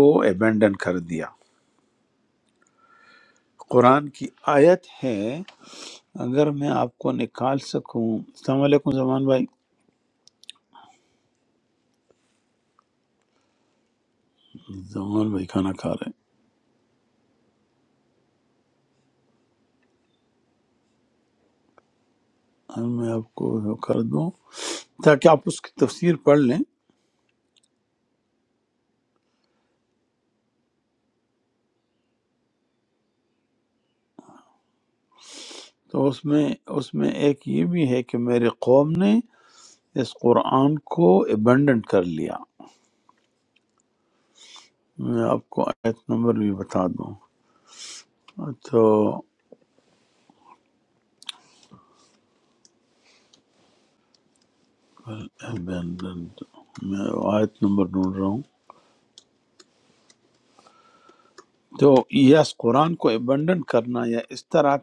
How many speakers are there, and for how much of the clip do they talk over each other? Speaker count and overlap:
one, no overlap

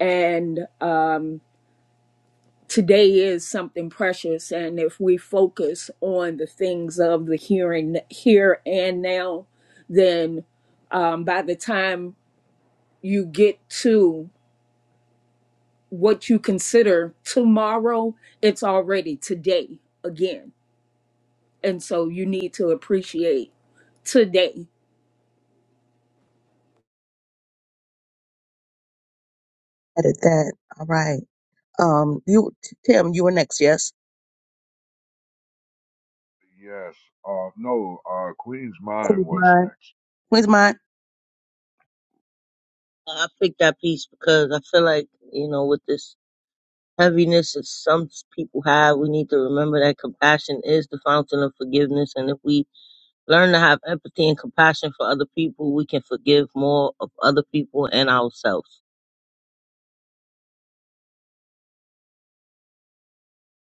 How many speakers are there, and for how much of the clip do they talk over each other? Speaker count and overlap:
four, about 1%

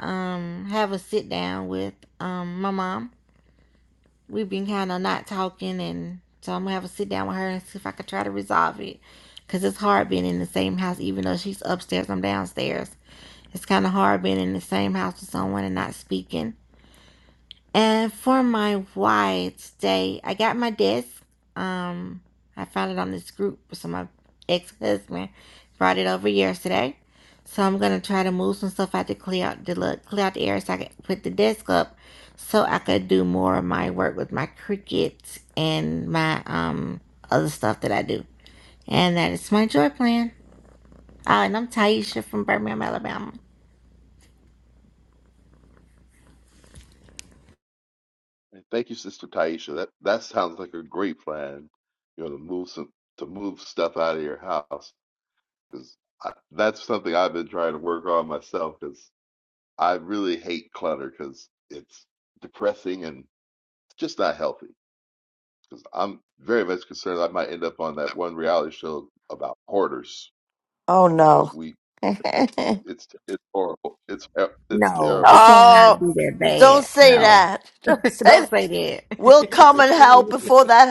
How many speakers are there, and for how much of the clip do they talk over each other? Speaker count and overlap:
three, about 4%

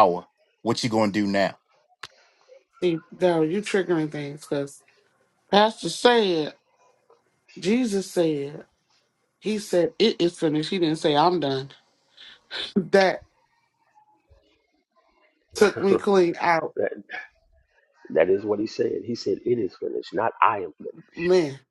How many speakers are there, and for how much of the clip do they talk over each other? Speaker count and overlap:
three, no overlap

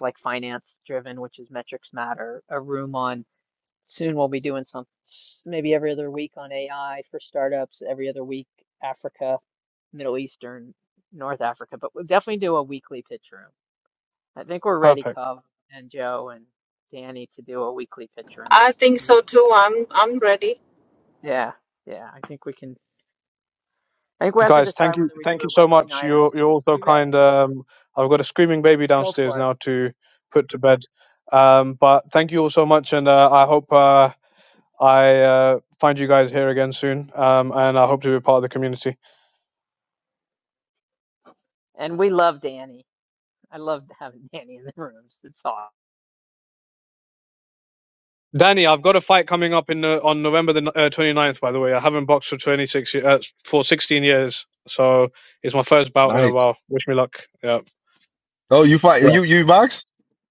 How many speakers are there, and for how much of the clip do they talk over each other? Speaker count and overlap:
four, about 7%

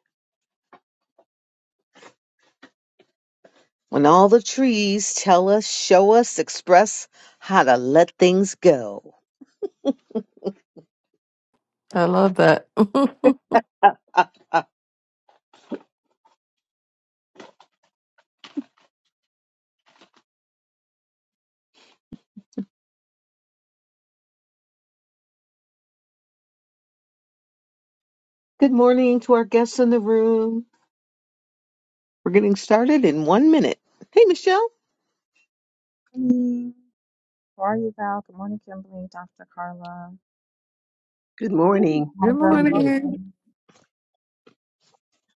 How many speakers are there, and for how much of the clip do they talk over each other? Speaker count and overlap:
four, about 2%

